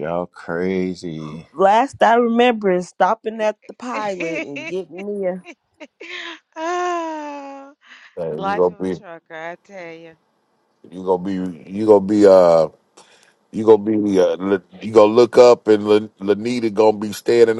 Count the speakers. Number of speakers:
4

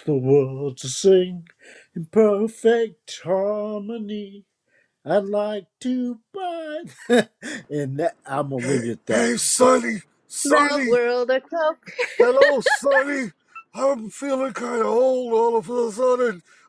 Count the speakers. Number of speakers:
3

